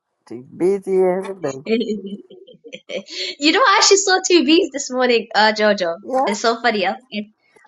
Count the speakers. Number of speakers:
two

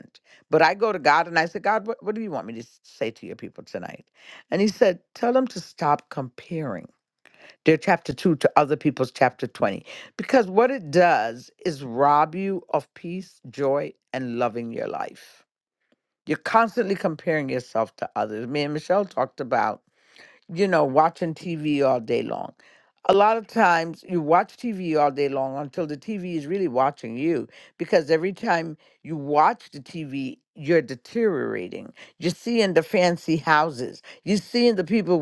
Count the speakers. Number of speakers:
one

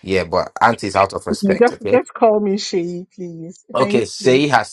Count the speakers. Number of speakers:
two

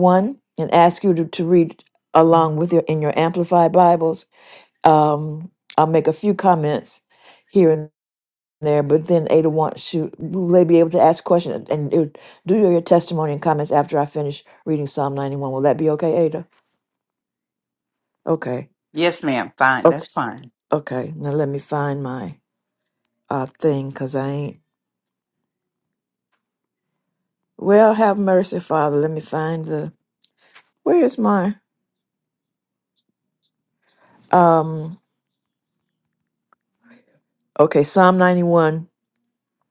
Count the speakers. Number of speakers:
two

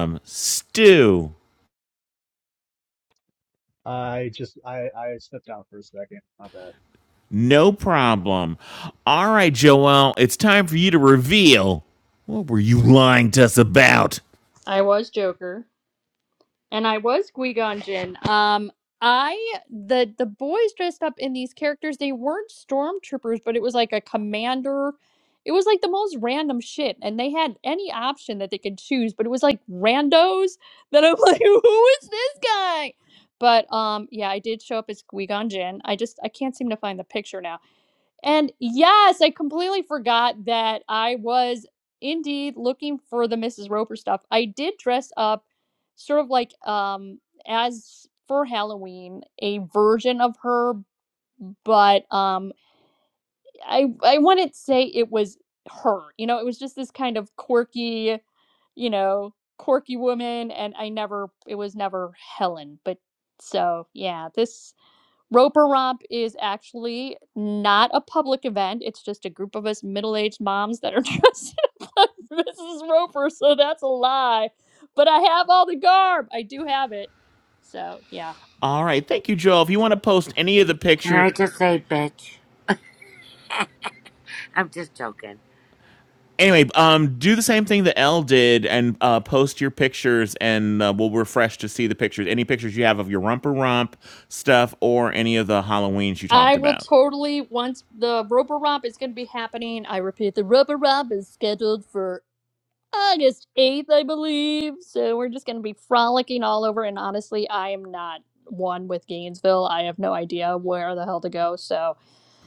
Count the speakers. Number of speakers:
four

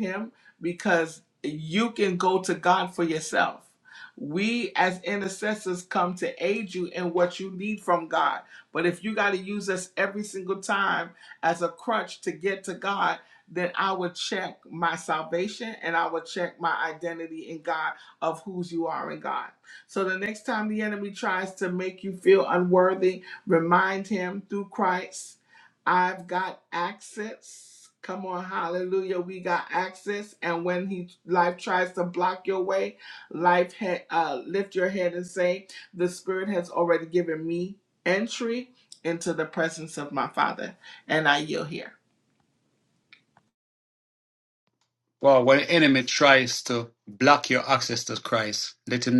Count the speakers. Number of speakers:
two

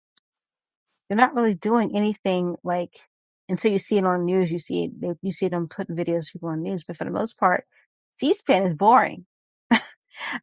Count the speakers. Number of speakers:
one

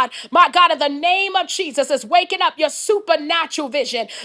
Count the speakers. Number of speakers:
one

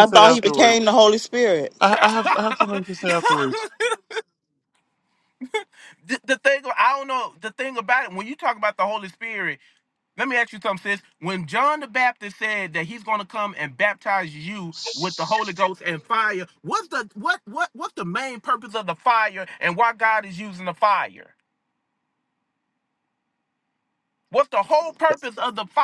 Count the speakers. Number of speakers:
three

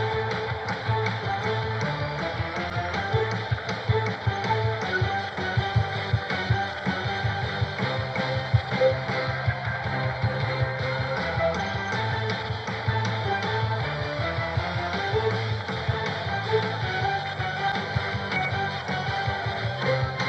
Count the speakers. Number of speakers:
zero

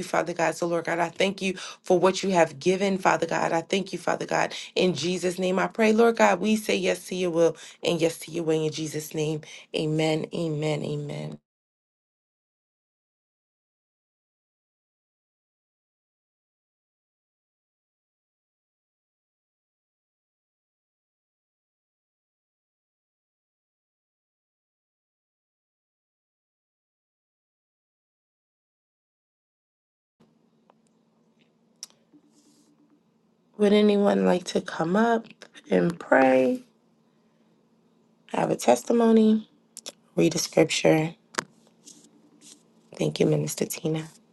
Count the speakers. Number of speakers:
one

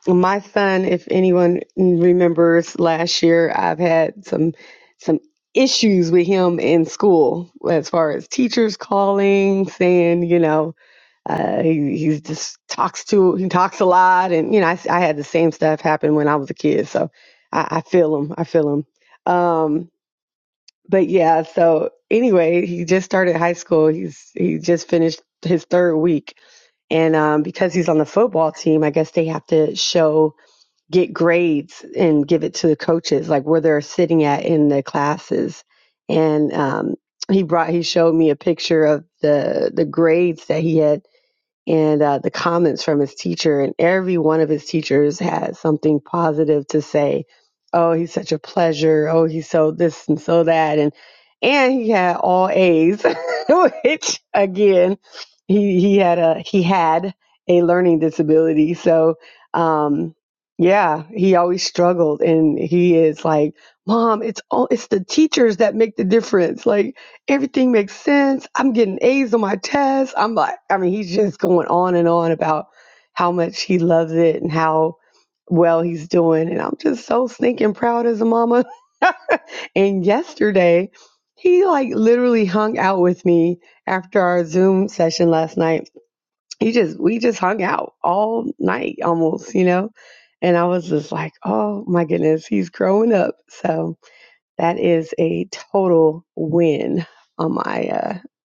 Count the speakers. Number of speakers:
one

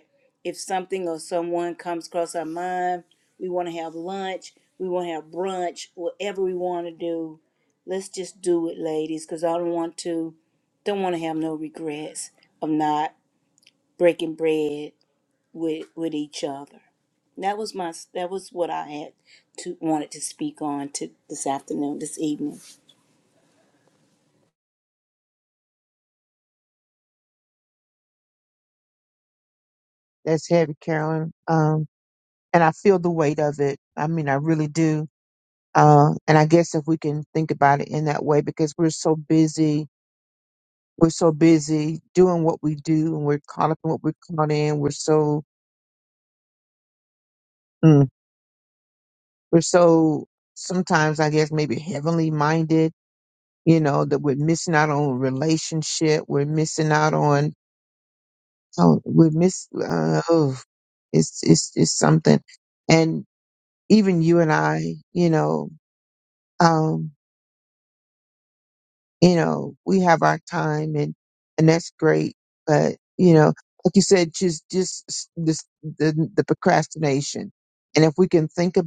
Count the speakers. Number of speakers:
two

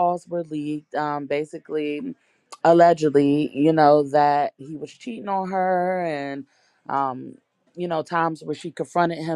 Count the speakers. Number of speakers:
one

